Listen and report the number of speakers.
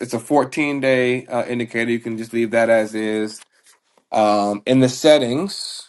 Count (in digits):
1